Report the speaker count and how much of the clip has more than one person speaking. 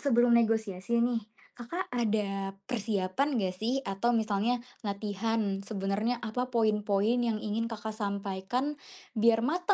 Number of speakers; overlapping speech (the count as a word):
one, no overlap